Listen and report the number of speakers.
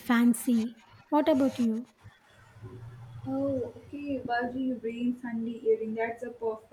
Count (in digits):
2